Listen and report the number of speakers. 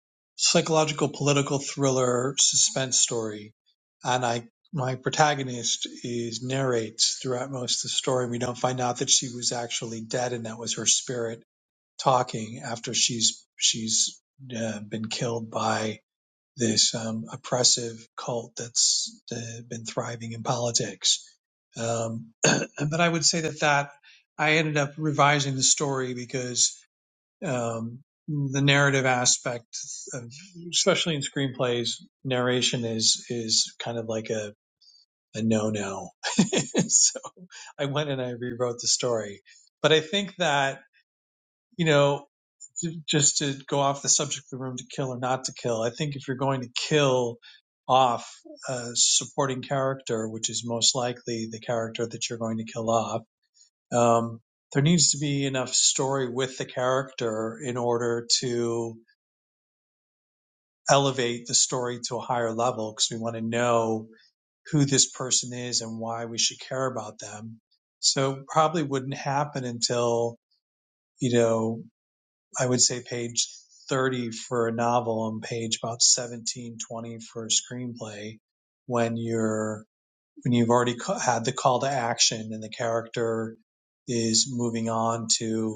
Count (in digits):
1